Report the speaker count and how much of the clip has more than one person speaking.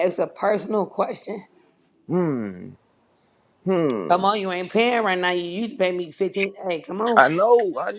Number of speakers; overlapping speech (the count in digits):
2, about 4%